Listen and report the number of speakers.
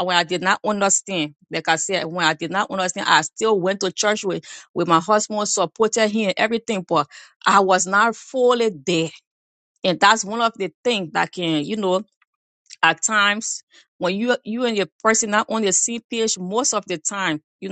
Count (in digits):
1